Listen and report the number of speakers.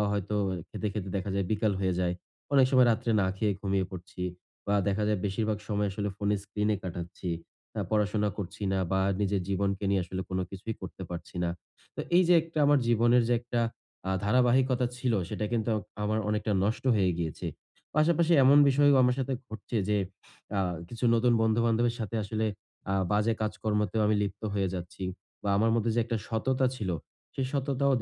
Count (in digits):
1